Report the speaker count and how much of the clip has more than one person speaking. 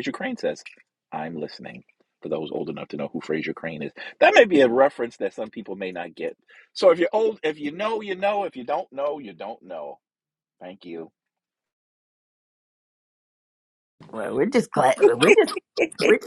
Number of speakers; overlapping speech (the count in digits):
2, no overlap